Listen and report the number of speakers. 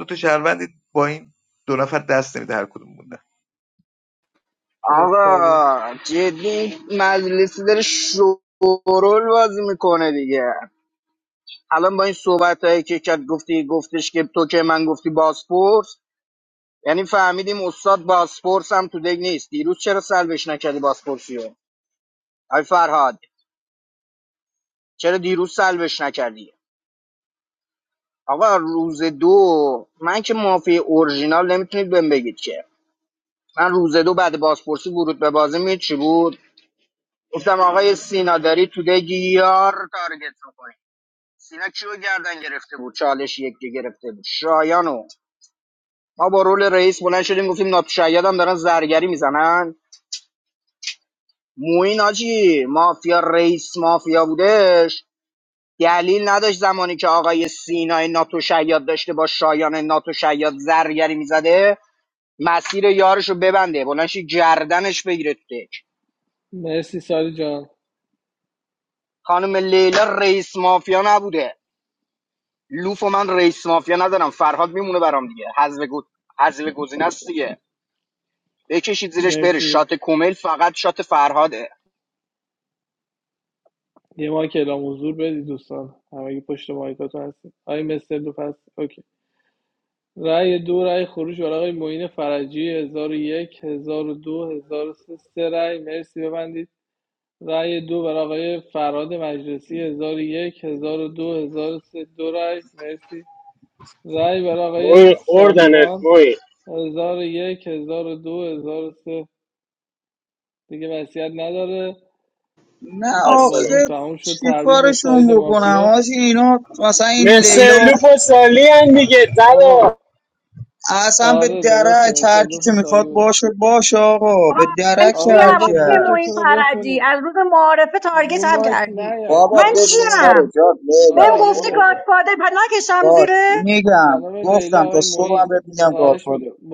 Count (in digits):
6